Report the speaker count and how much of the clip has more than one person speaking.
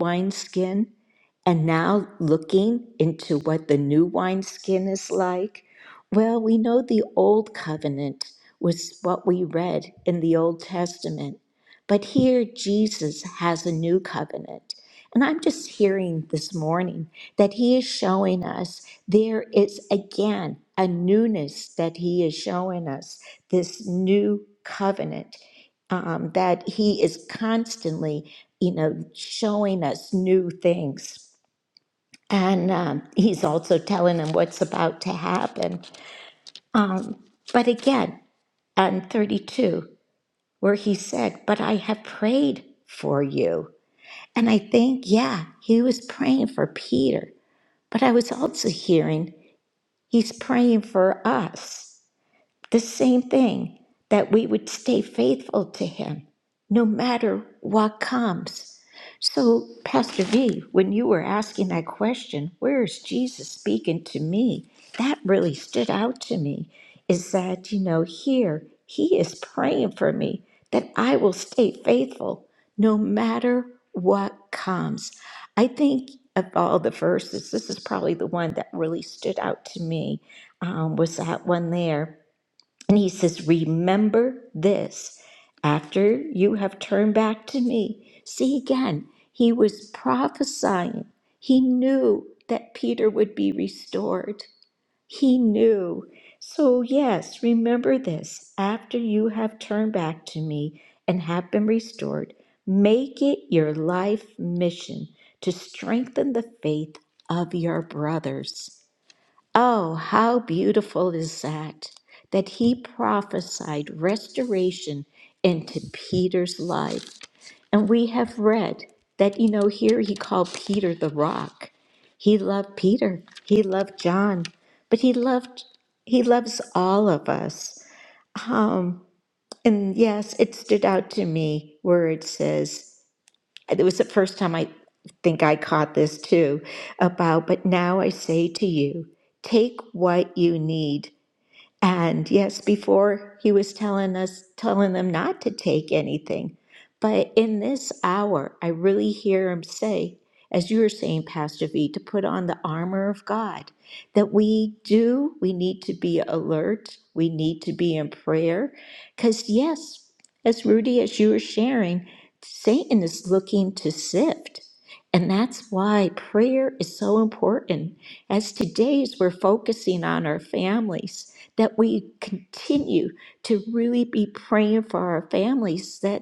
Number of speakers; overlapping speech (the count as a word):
one, no overlap